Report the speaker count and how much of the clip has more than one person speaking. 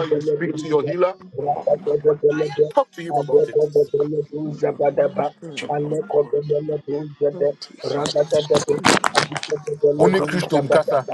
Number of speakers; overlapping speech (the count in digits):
3, about 46%